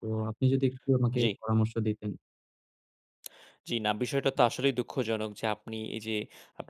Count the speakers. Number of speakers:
2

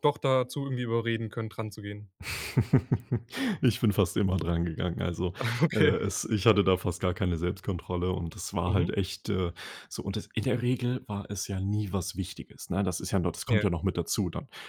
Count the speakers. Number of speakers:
2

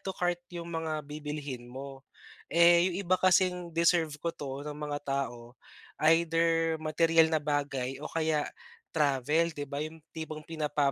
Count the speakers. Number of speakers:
1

